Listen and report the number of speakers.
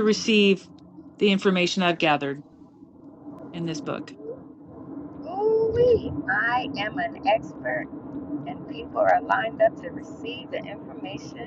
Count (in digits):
2